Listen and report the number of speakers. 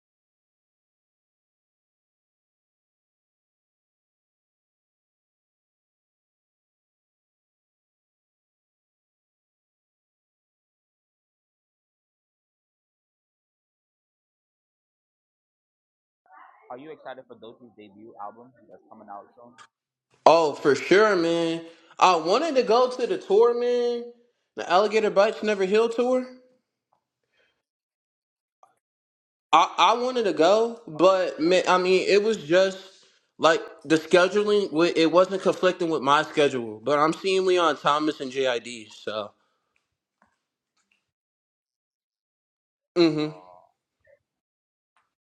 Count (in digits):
2